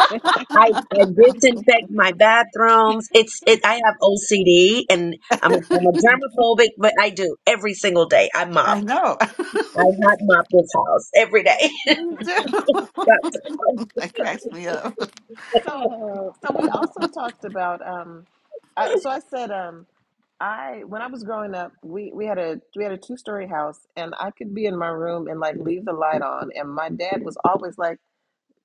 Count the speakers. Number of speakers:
4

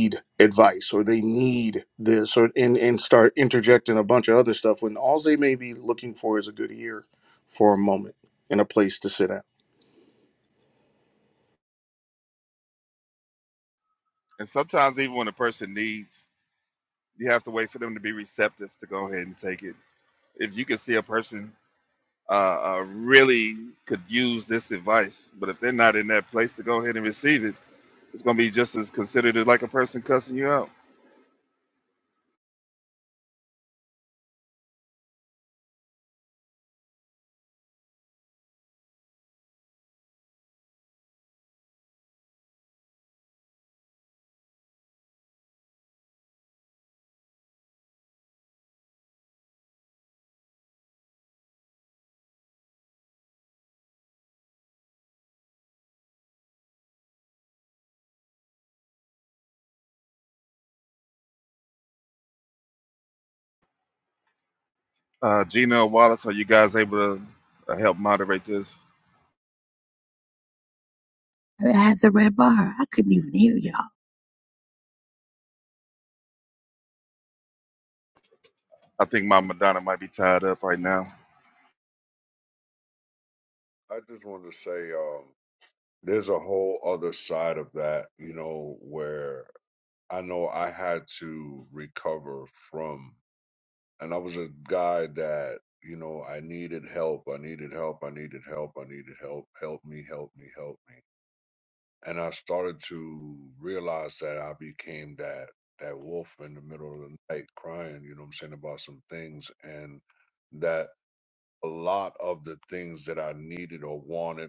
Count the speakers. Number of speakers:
4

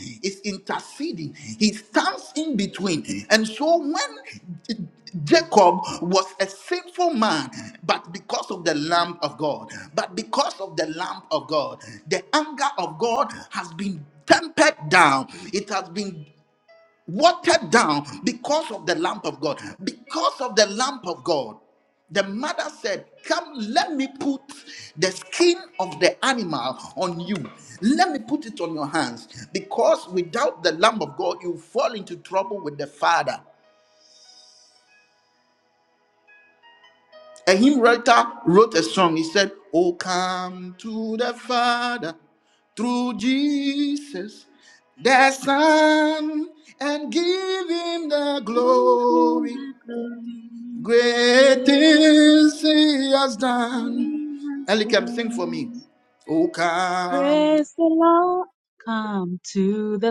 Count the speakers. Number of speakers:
2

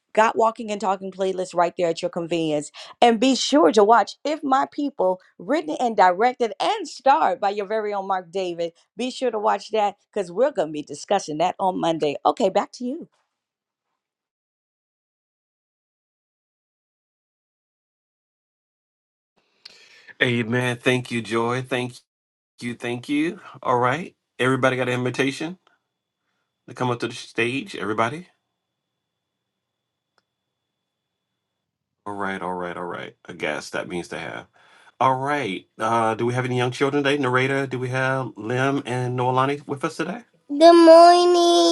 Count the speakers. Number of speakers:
3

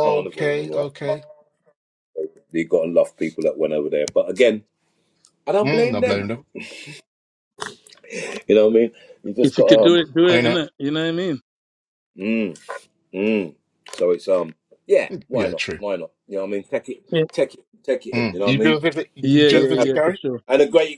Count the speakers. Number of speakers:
3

